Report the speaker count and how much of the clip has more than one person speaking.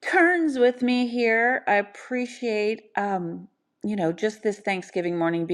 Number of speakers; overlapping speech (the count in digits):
1, no overlap